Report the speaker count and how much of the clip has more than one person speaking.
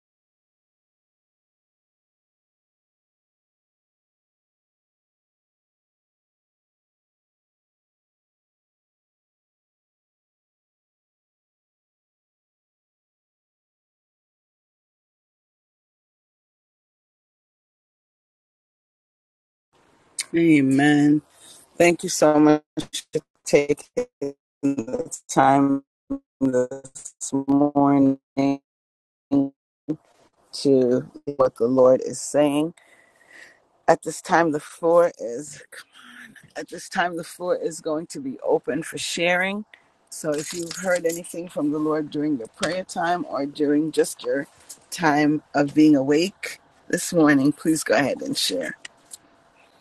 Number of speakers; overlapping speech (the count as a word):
one, no overlap